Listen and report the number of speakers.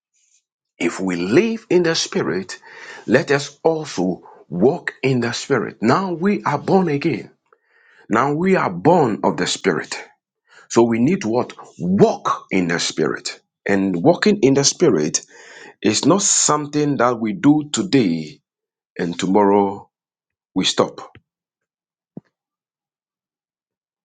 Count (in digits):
1